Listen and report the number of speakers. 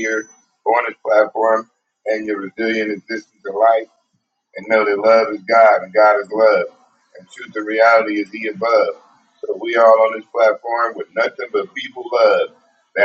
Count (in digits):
1